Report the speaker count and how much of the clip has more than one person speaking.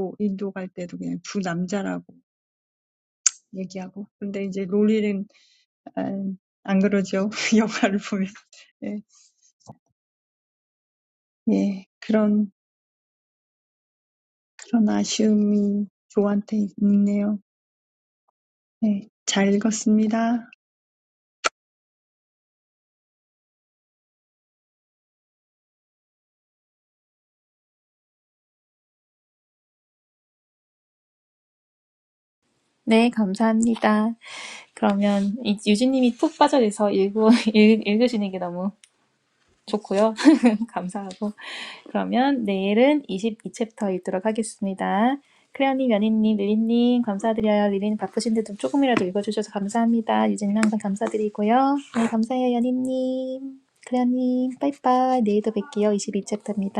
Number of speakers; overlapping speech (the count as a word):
two, no overlap